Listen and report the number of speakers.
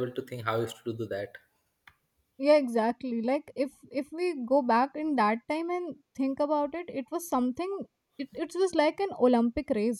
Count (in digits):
2